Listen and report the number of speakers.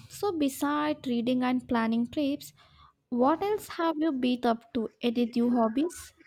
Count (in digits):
1